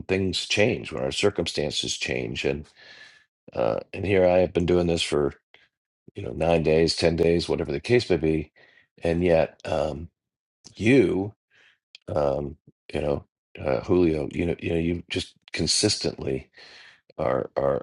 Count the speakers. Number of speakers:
one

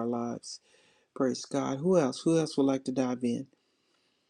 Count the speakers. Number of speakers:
one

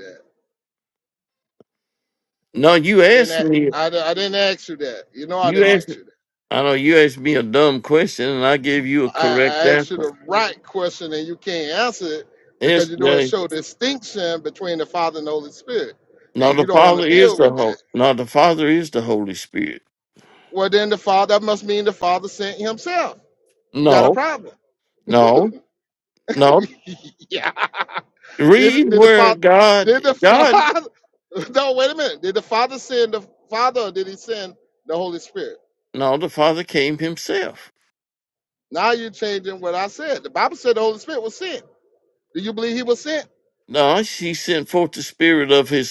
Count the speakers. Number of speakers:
two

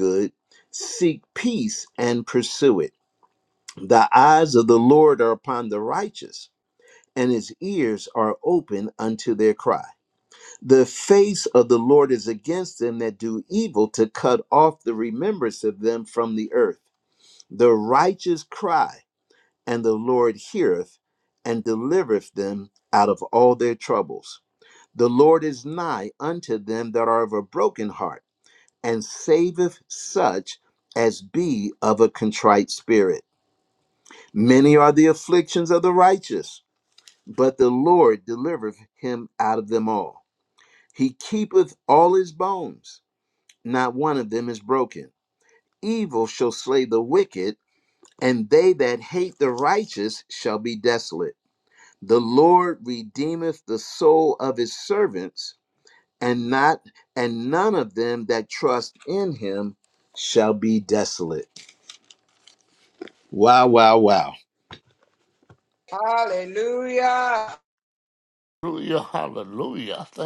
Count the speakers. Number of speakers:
three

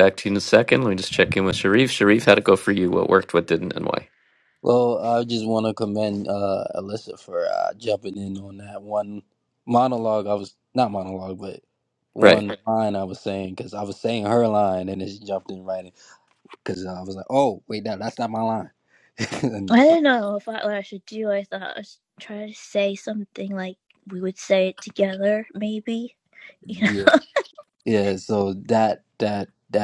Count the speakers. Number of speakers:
three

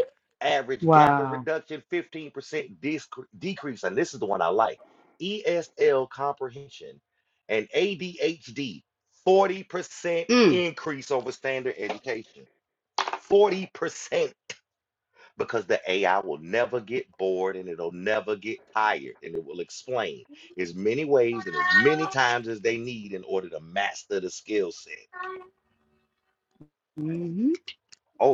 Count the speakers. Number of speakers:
two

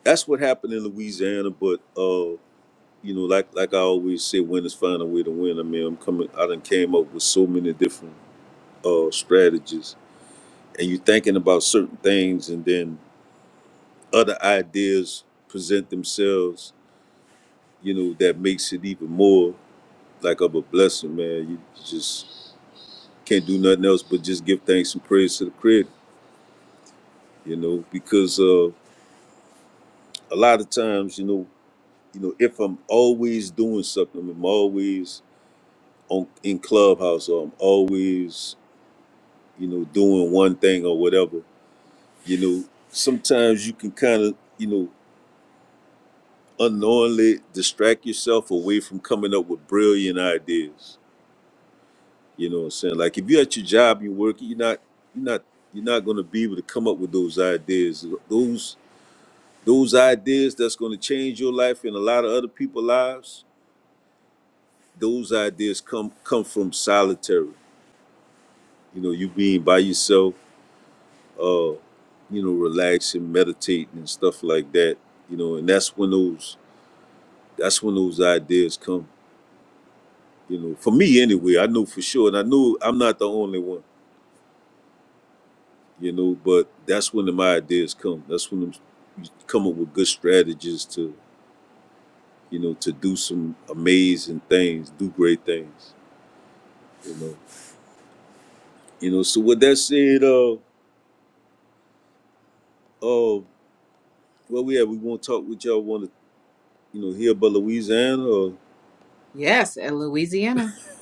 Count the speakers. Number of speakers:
two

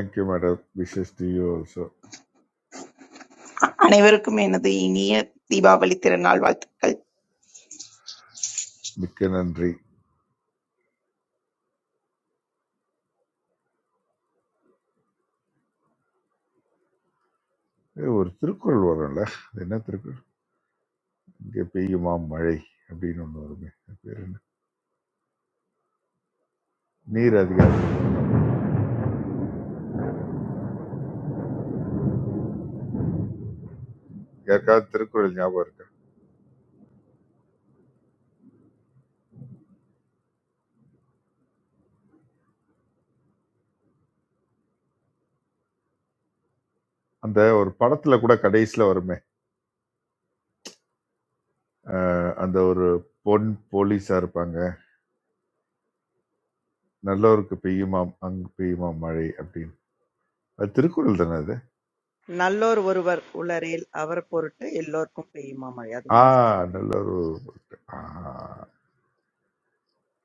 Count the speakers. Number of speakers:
three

